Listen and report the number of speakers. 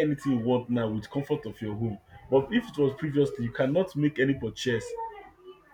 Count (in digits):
1